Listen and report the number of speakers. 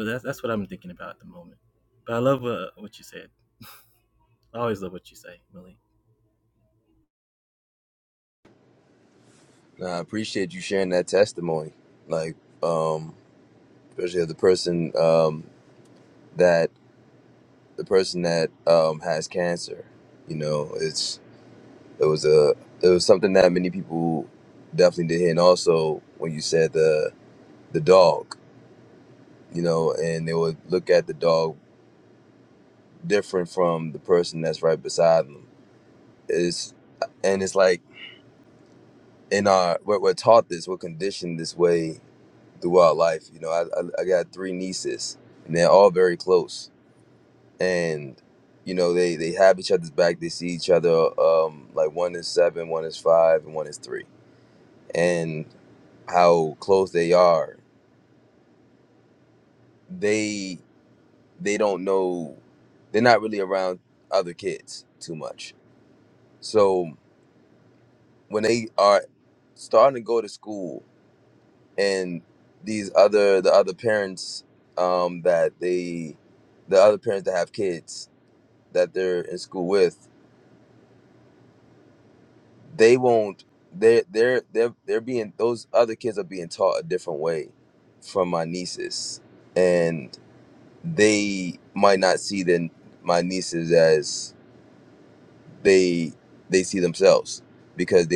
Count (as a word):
two